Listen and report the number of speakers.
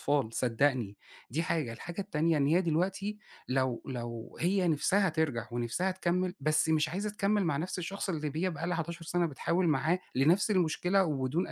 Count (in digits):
1